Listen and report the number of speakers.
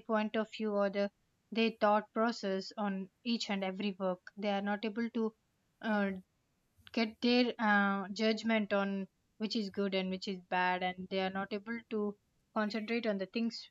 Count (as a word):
one